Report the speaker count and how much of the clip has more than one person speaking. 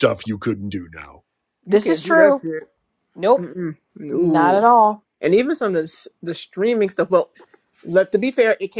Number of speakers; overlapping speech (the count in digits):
3, about 14%